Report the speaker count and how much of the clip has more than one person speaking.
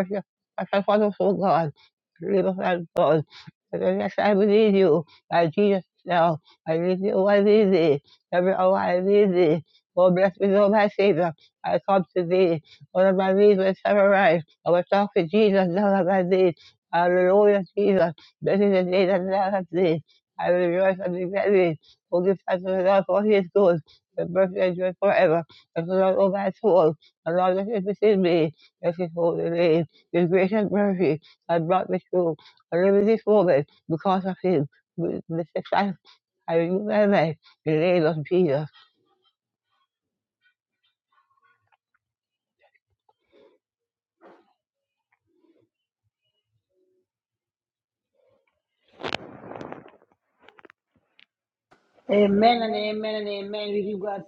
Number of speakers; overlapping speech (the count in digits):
2, no overlap